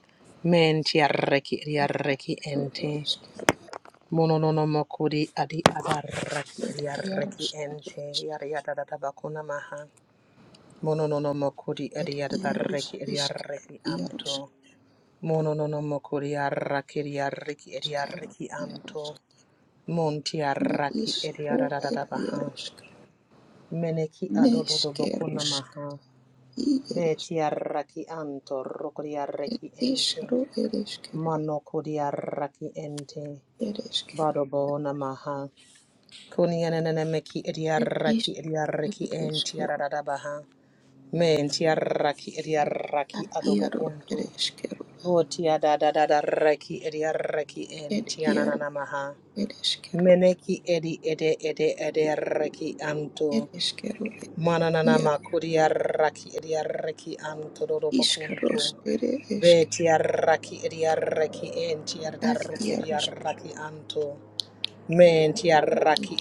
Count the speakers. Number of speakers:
2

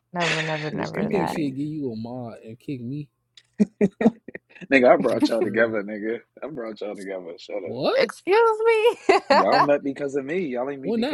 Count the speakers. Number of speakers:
3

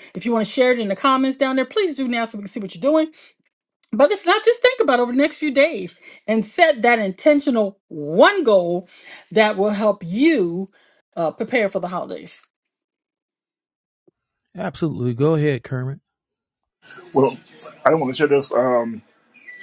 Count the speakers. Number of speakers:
3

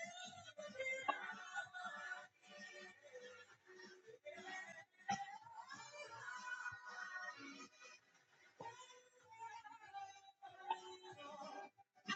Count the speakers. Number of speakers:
0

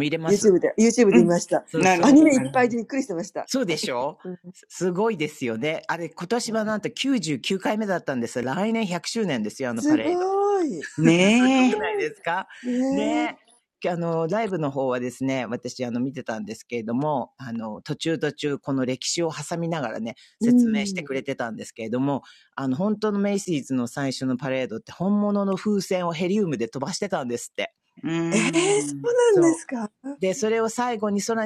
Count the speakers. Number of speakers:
3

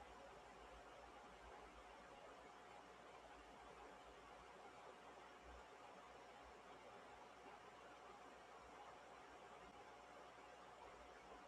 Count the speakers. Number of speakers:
0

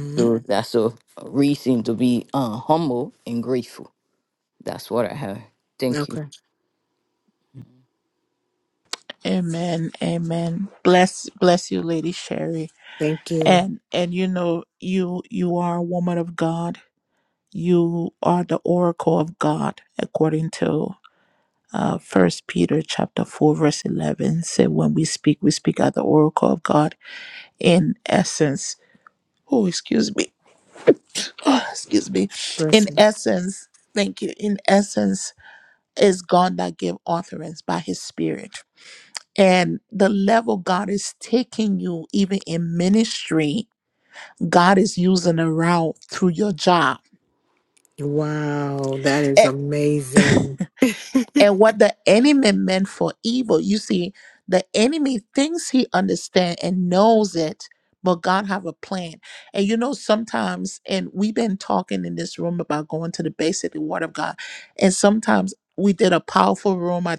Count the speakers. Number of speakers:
3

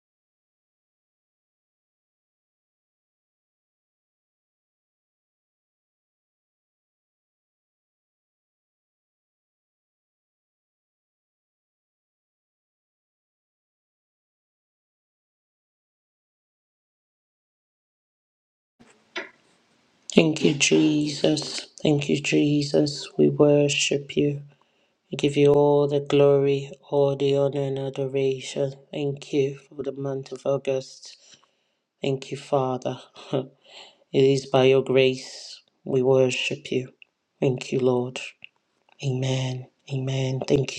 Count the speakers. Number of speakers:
1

